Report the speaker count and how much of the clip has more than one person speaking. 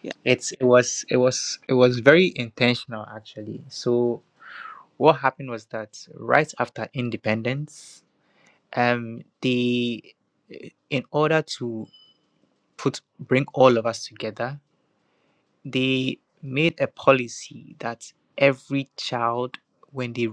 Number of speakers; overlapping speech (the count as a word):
one, no overlap